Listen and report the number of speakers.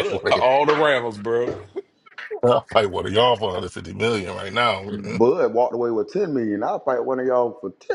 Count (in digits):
3